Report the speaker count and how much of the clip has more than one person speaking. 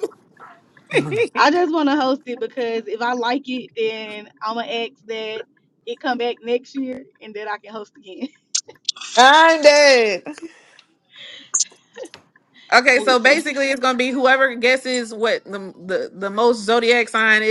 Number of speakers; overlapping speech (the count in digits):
2, about 3%